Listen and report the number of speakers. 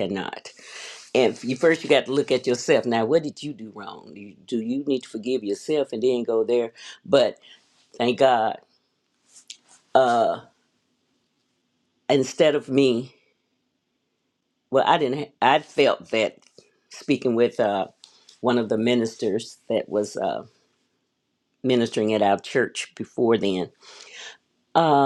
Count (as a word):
one